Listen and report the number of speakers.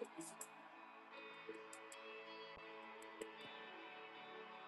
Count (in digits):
0